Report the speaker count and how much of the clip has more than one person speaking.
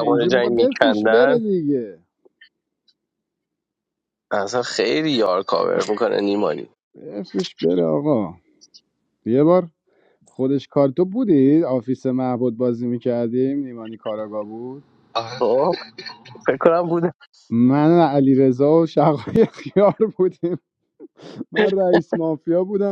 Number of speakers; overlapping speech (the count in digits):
2, about 6%